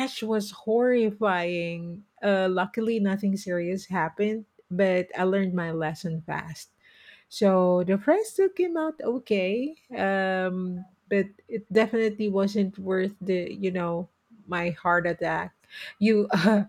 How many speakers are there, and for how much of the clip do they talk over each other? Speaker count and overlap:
1, no overlap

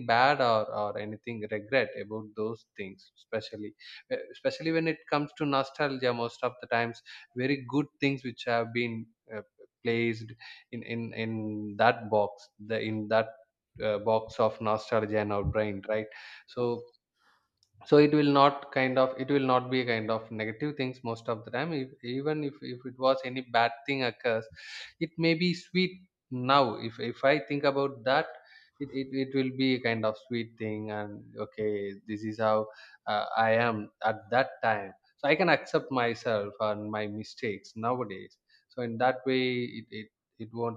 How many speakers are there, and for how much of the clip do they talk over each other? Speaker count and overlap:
1, no overlap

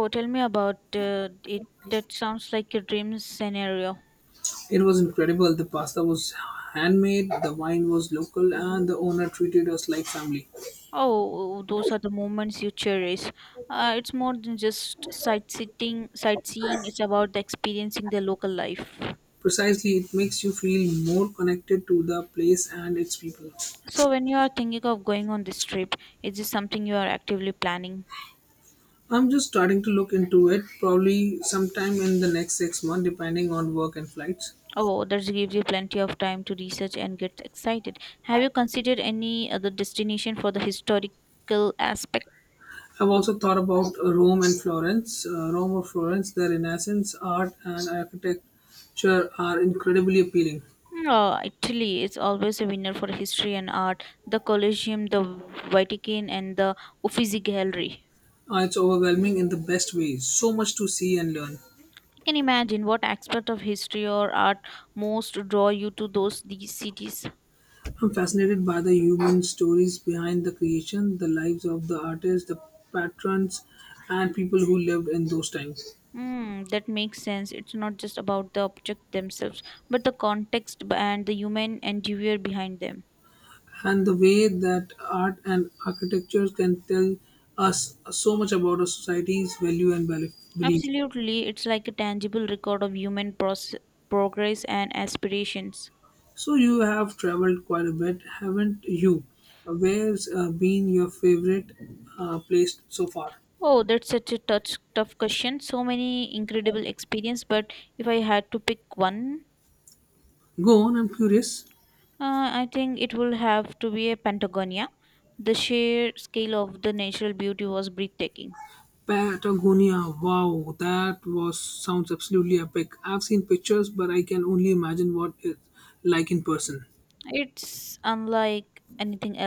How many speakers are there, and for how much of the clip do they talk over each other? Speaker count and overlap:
2, under 1%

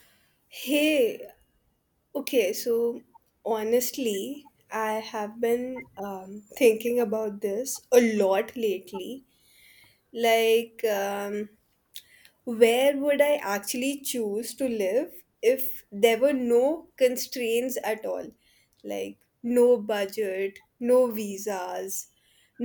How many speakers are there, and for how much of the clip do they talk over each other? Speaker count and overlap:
1, no overlap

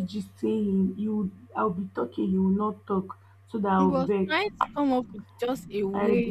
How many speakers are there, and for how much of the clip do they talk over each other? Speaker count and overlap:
2, about 15%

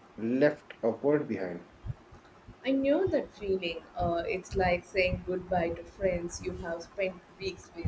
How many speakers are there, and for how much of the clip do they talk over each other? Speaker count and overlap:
2, no overlap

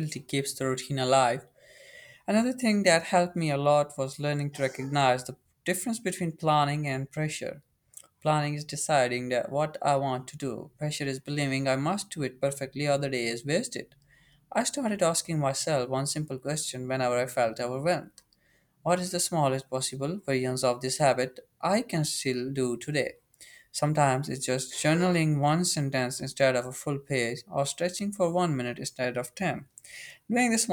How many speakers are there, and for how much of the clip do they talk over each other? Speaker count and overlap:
1, no overlap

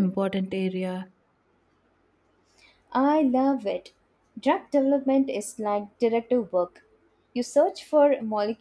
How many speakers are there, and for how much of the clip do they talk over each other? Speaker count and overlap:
2, no overlap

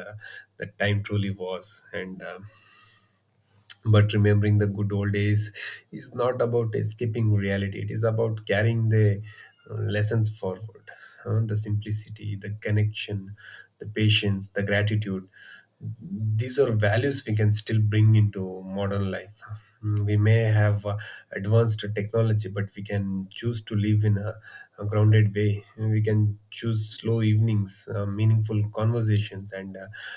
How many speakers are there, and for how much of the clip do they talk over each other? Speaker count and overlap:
1, no overlap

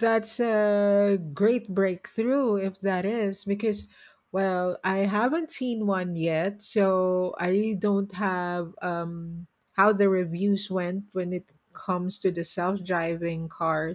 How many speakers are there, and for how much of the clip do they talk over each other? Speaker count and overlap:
1, no overlap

